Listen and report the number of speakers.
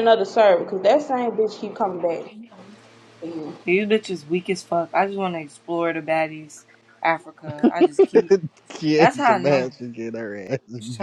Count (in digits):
3